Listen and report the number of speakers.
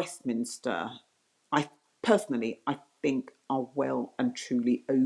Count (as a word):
one